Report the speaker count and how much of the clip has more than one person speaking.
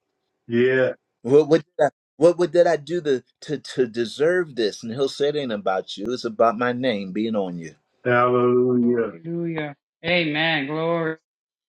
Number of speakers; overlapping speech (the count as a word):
three, about 2%